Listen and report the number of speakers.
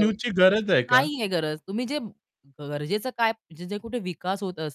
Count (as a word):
two